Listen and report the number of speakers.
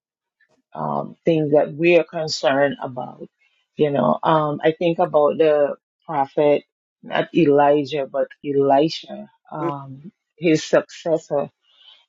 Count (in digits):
1